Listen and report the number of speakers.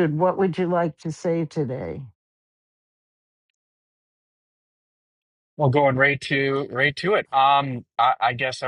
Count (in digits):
2